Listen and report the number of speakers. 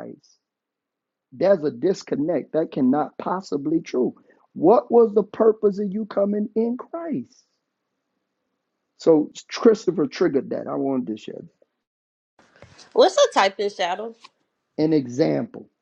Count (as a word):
two